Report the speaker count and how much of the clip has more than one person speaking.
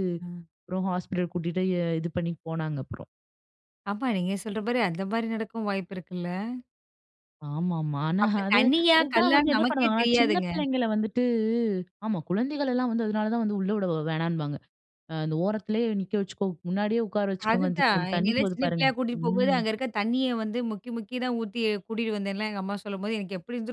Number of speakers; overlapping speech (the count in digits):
2, about 15%